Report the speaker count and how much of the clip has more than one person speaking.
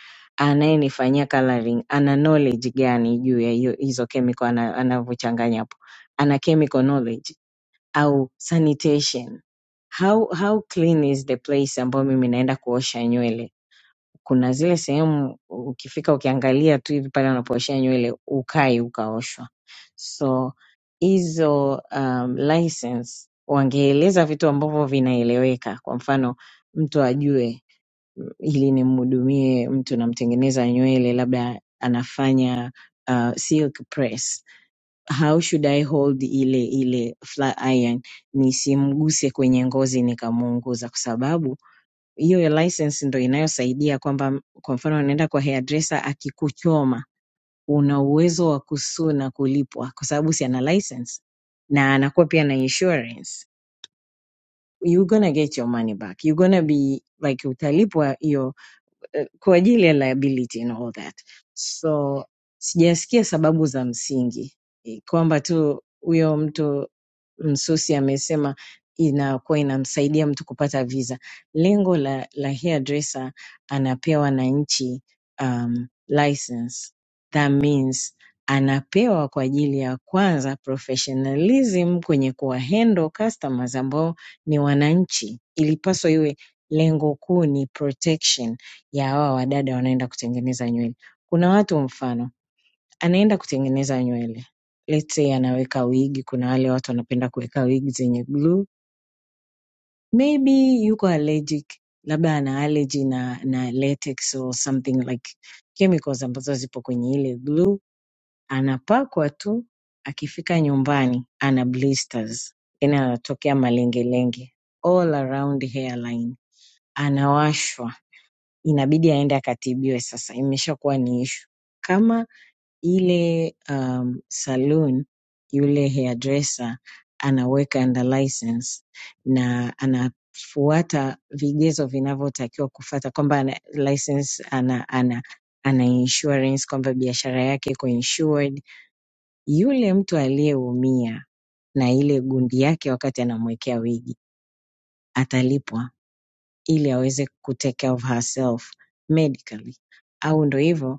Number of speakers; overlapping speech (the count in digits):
1, no overlap